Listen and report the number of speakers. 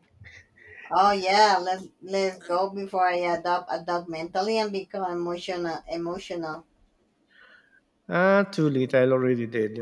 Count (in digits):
2